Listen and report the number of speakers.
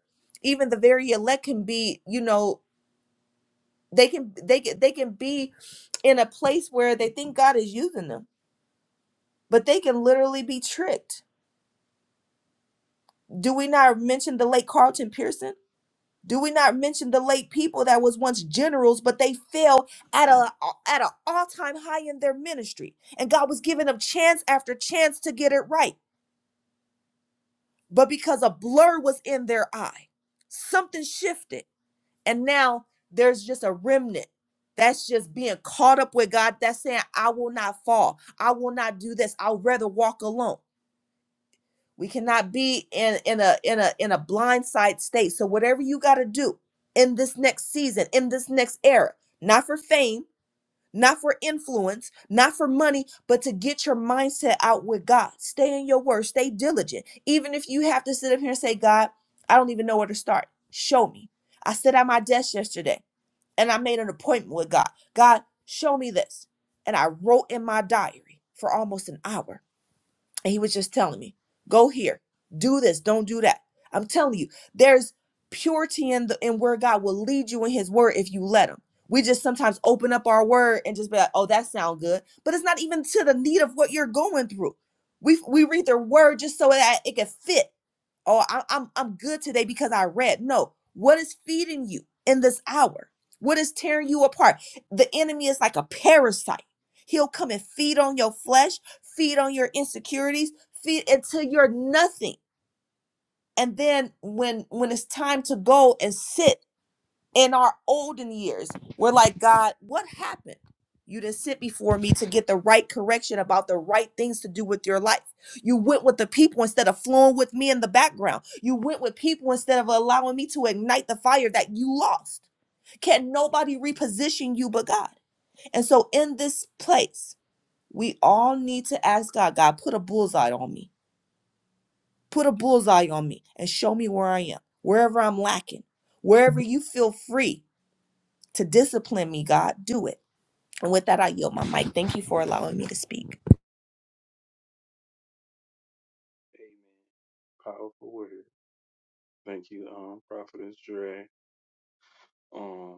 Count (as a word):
two